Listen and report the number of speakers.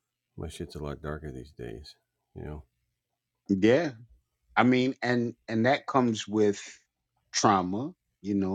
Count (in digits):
2